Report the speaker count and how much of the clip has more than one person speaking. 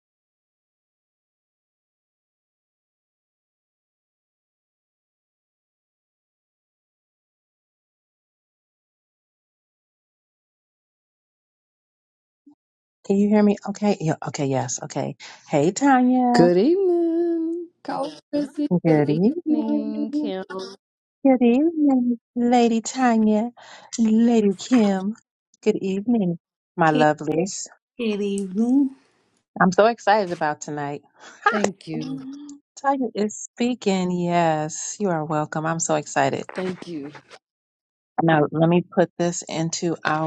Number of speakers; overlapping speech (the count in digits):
3, about 5%